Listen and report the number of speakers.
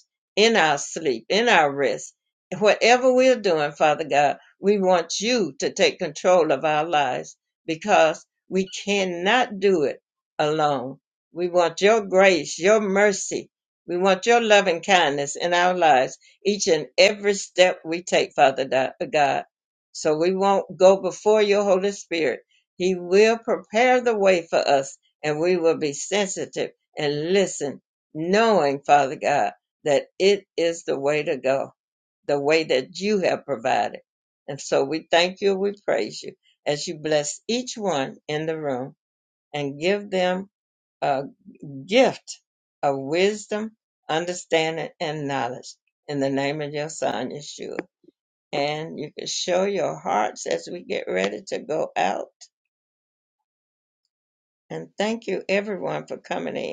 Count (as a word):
one